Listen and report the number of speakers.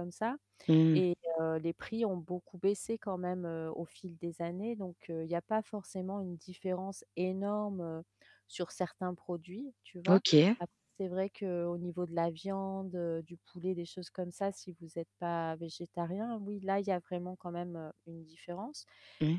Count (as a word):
two